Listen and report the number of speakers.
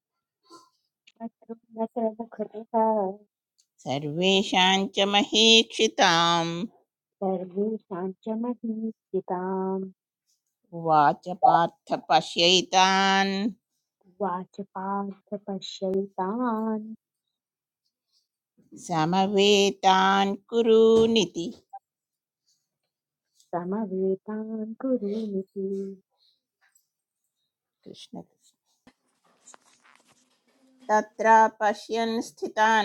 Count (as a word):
two